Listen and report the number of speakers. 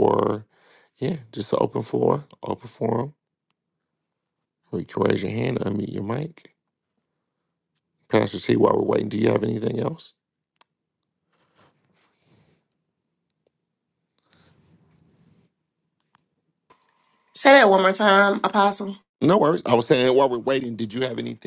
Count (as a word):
two